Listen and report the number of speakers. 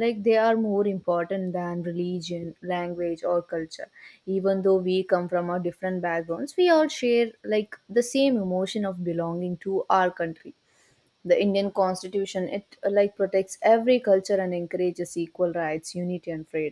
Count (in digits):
1